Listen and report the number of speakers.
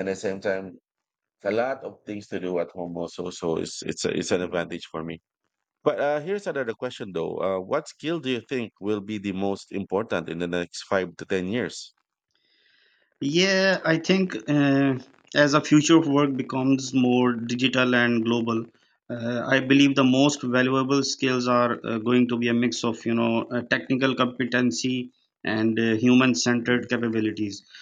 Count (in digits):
2